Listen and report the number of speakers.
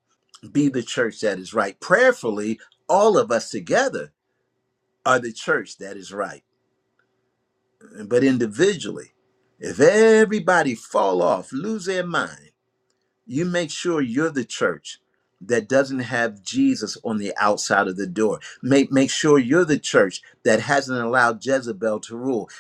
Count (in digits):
1